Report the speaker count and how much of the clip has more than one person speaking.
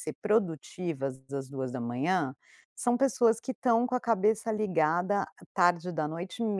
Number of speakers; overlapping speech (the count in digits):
1, no overlap